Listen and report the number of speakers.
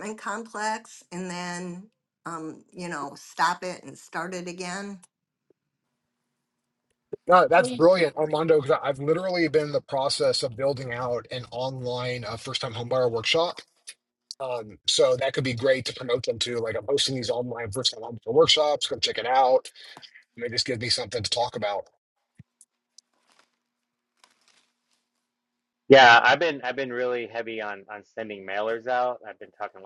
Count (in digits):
3